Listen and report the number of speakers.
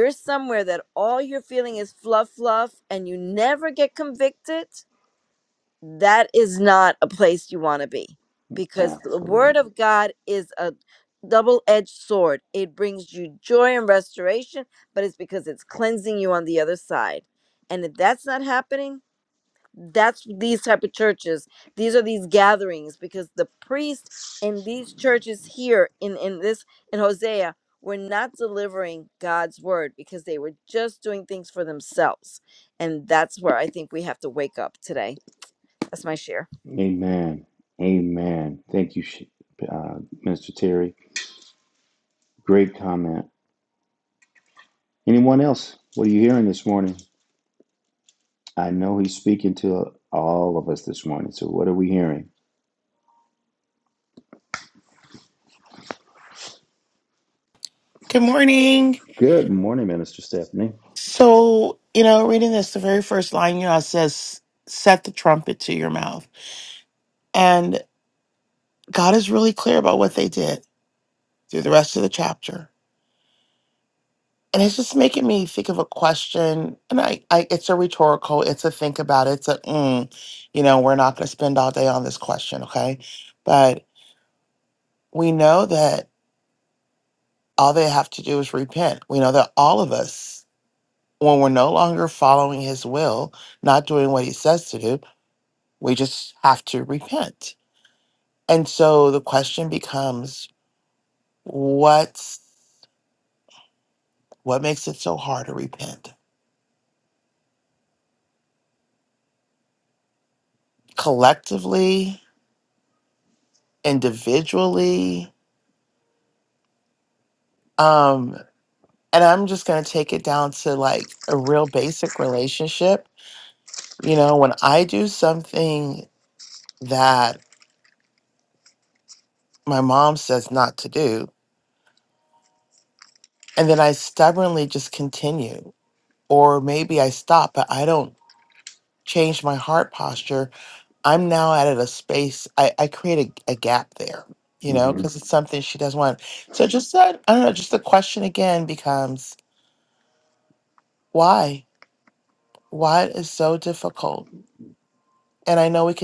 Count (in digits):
3